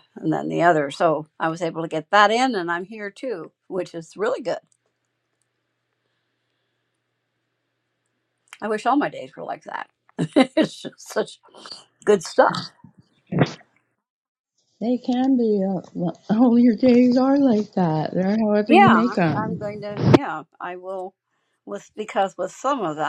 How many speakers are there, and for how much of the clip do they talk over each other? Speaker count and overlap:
2, about 5%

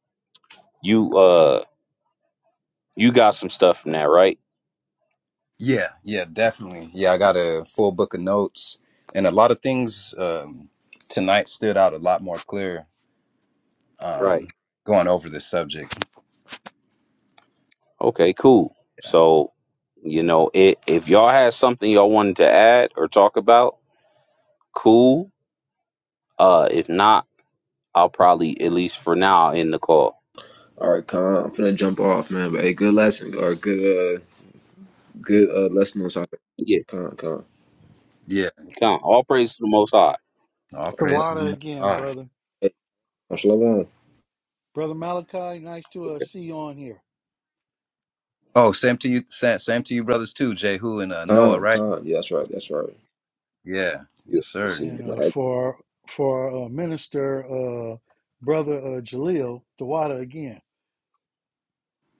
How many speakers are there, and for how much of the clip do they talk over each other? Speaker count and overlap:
4, about 5%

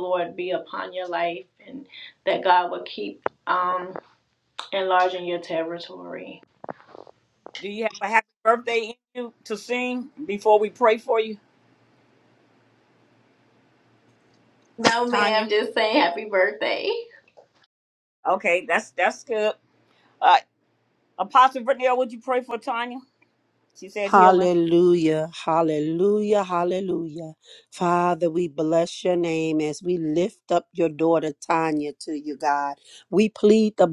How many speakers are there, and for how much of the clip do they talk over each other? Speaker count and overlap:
3, about 2%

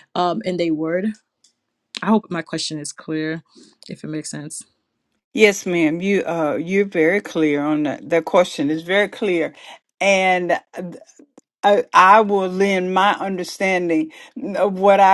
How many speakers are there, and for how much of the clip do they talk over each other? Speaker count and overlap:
2, no overlap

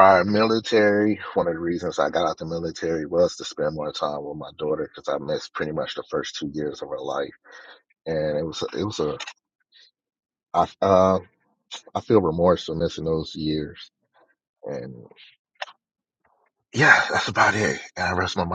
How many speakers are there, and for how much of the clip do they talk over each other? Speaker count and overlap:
1, no overlap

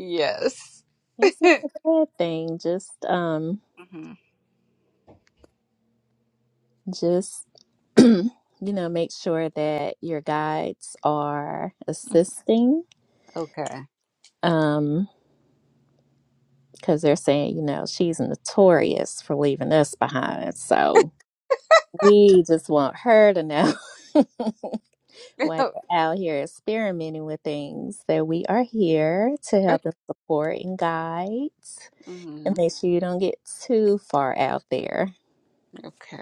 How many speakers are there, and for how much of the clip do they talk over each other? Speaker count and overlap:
2, under 1%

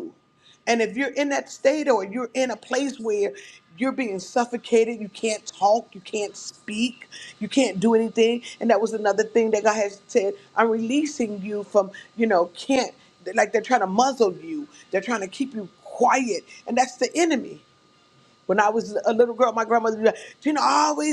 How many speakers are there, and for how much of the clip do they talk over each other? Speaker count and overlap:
1, no overlap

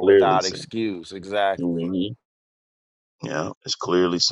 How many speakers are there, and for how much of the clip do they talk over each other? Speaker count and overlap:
2, about 21%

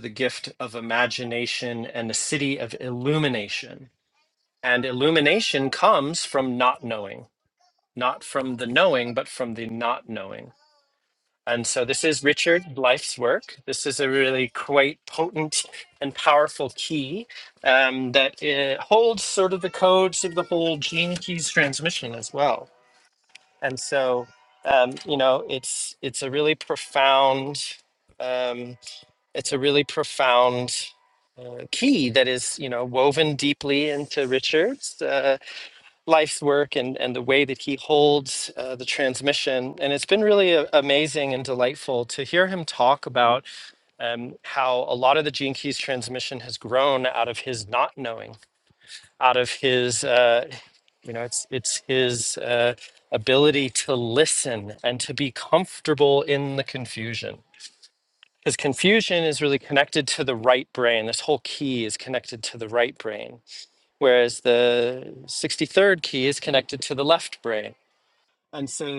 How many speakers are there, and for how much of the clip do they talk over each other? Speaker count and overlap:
1, no overlap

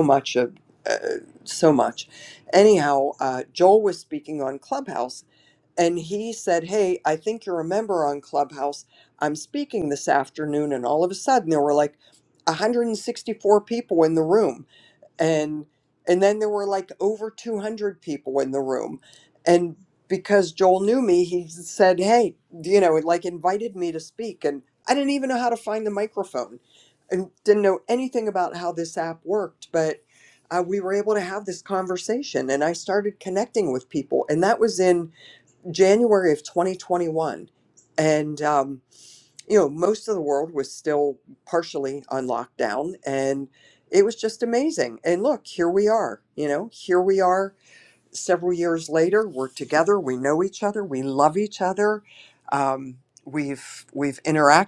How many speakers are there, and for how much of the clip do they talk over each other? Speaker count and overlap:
1, no overlap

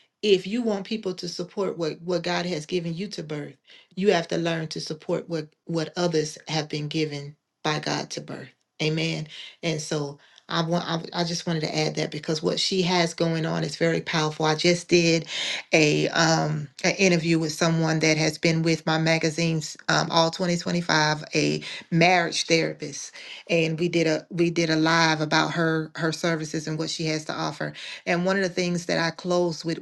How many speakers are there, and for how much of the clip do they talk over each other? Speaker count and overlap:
1, no overlap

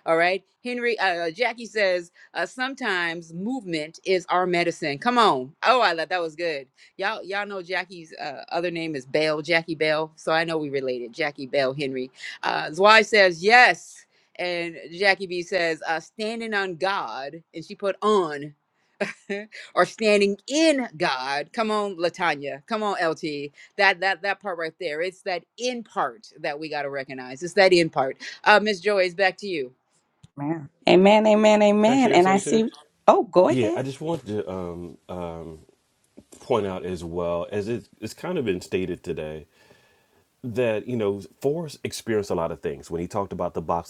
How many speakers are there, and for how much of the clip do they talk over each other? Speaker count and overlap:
3, about 2%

